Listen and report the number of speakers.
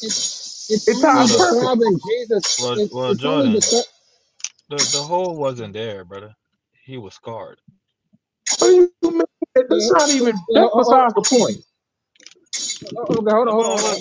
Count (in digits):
3